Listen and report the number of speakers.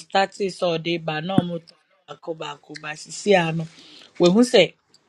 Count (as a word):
one